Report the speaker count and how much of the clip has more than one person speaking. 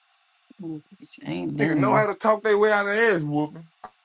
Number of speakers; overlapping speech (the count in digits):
2, about 11%